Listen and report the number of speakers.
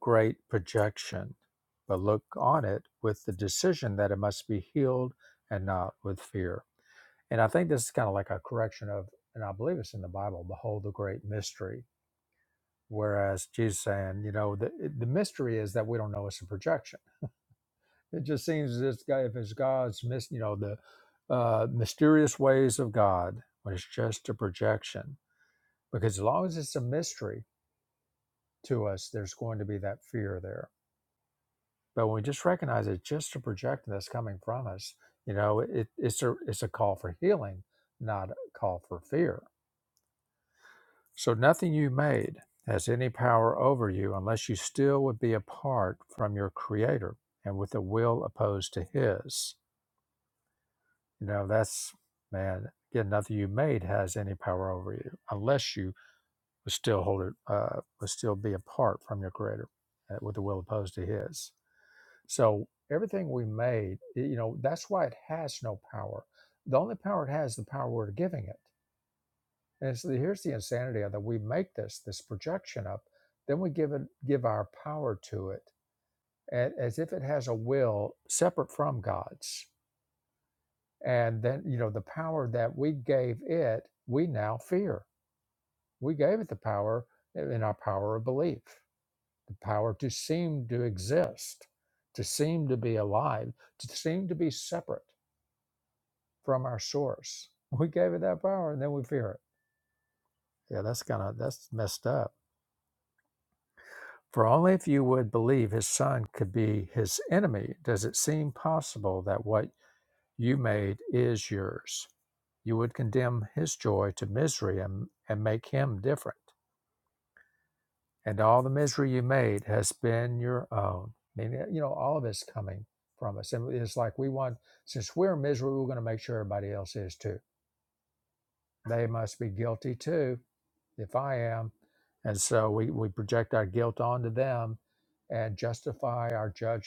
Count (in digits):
1